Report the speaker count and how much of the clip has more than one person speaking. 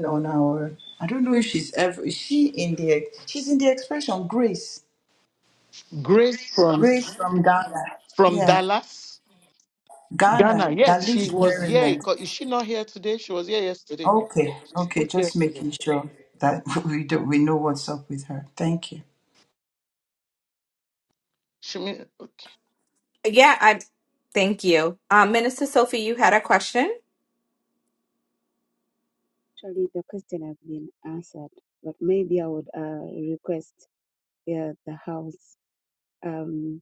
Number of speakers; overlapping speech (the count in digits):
4, about 8%